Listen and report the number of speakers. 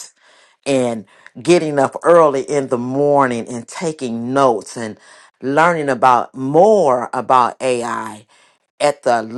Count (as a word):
one